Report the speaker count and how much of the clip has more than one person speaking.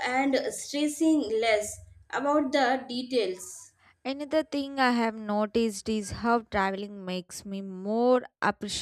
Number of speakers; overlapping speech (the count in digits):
2, no overlap